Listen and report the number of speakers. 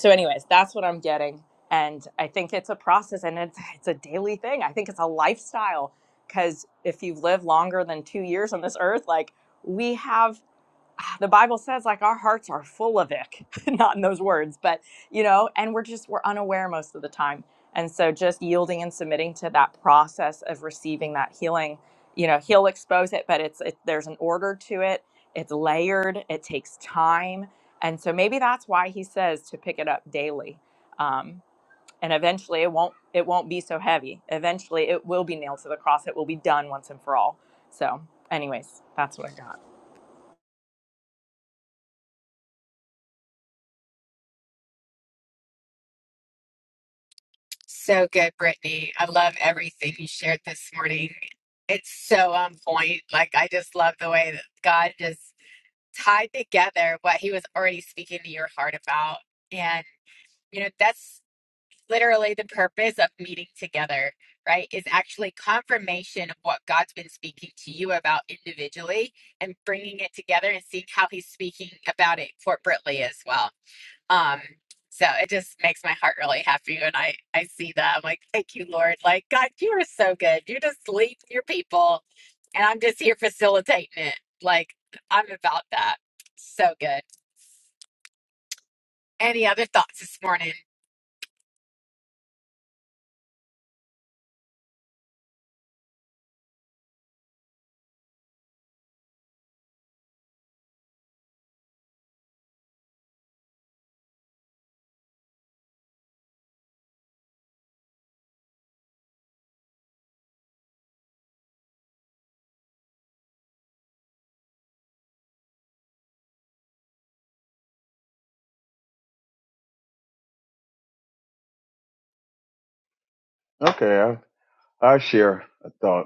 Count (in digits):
3